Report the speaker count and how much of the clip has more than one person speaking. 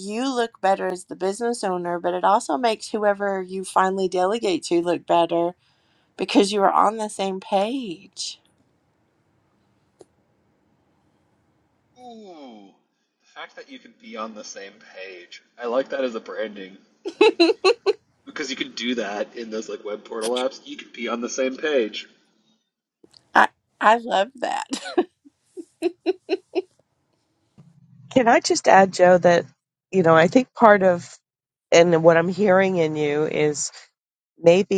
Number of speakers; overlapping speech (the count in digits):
3, no overlap